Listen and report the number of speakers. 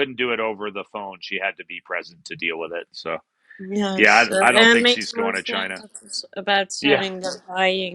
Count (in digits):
2